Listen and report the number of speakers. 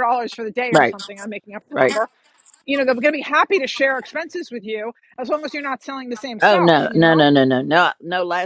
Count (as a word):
two